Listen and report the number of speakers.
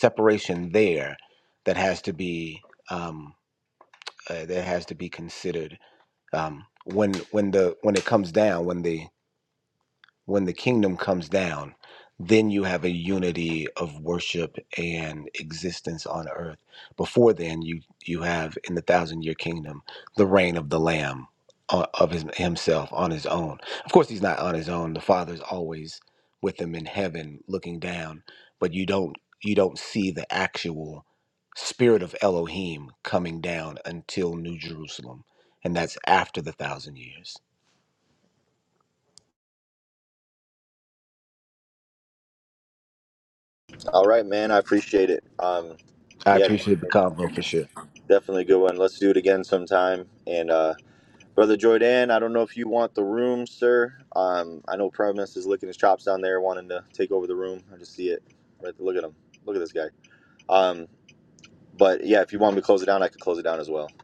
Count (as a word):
two